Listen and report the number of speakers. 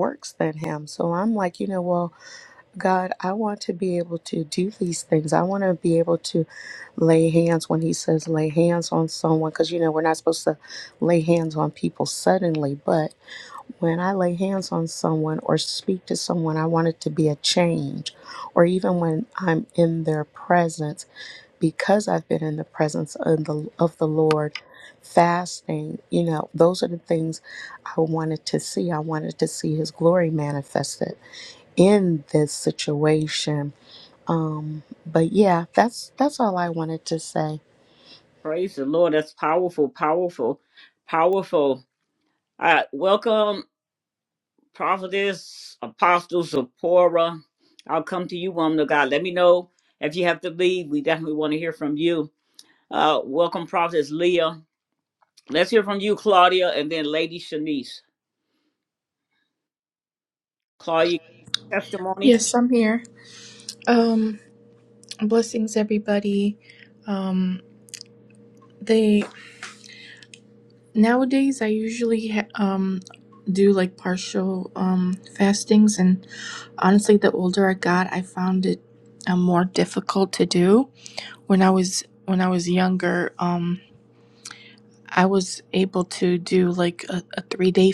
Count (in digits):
3